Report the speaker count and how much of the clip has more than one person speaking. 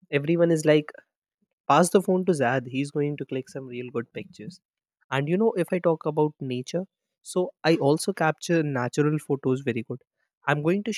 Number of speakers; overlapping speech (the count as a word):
one, no overlap